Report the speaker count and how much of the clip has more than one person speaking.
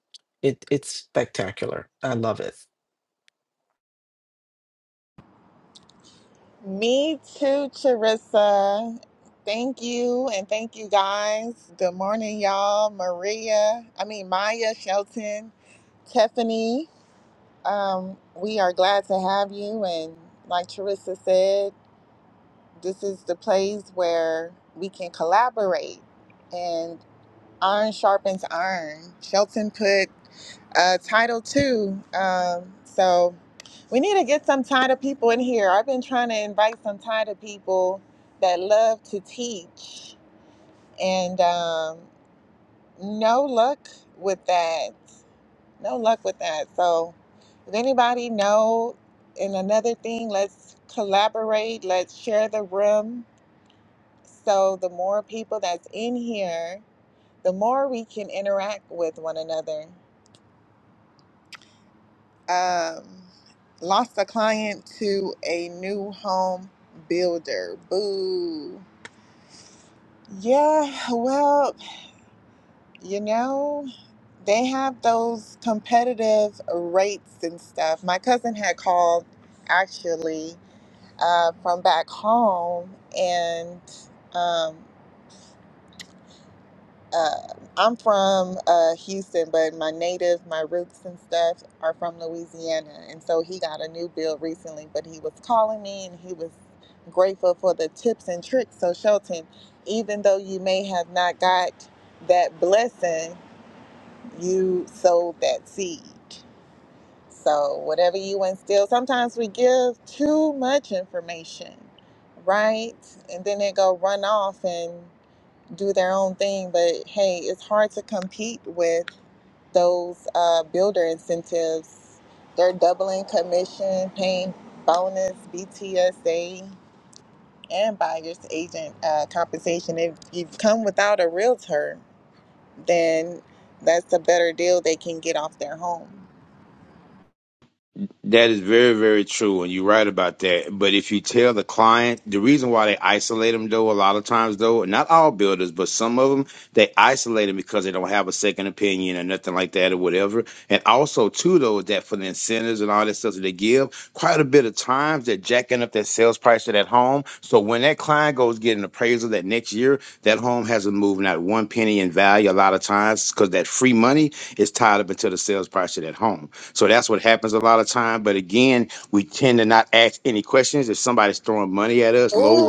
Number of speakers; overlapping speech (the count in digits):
3, under 1%